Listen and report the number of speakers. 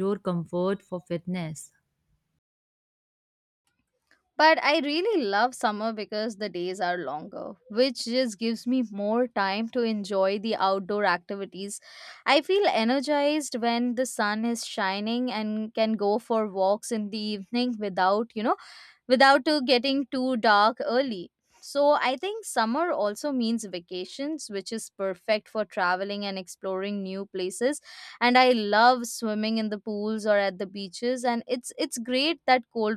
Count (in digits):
2